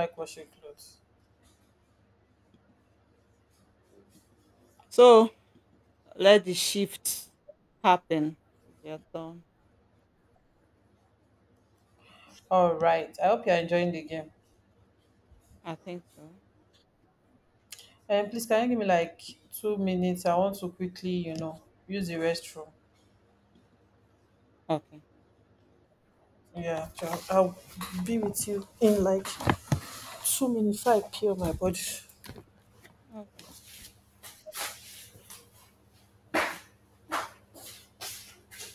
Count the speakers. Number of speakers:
2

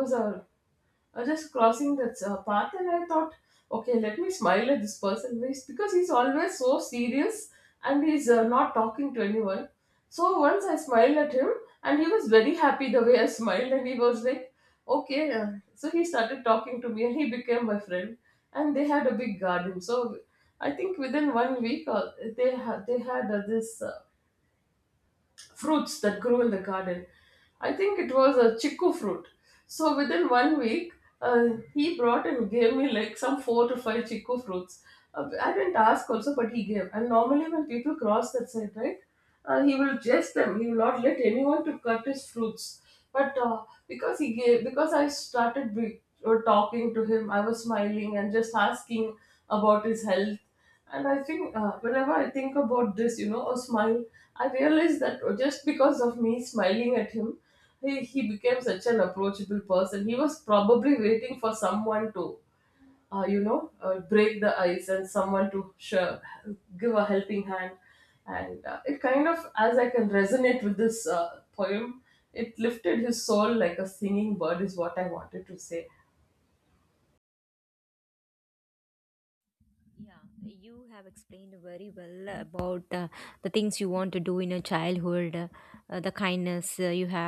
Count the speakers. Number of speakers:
2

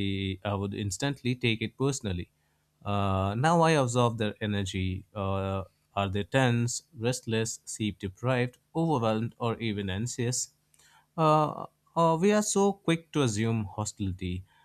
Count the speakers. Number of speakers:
1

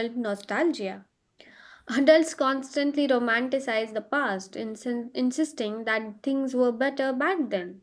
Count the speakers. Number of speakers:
1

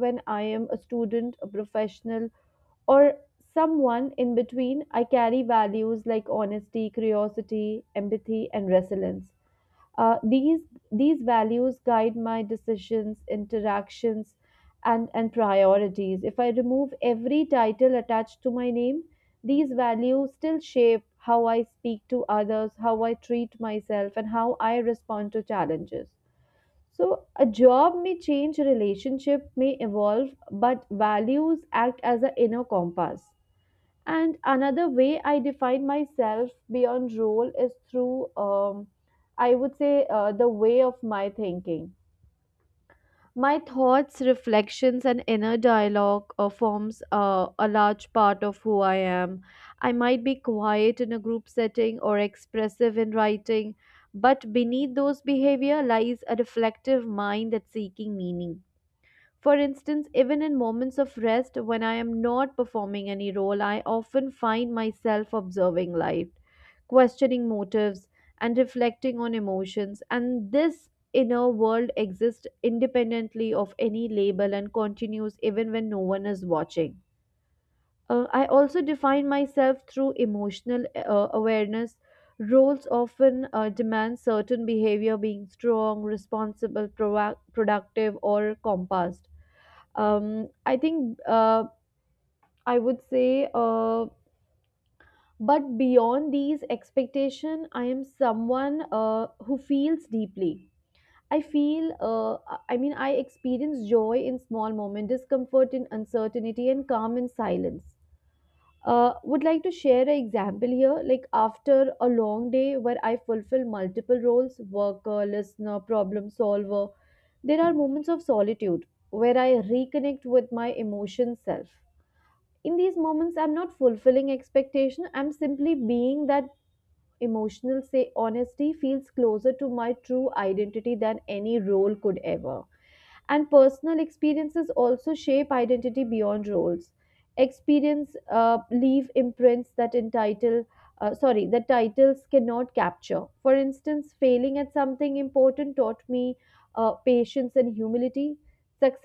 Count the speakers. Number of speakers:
1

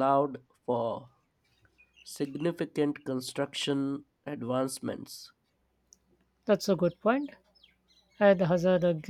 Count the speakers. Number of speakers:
2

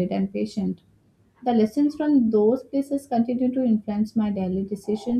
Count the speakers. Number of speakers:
1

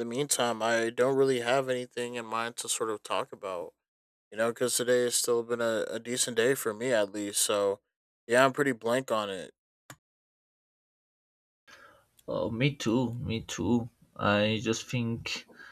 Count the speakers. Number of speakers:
2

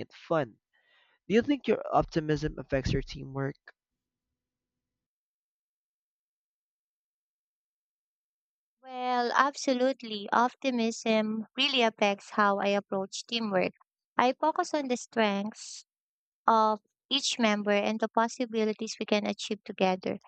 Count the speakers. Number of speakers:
2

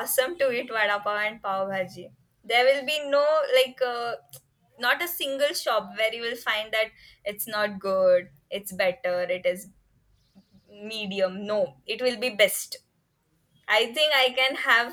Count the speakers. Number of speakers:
1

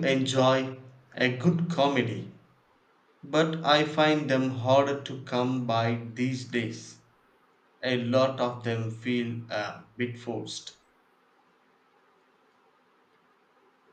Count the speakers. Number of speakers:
1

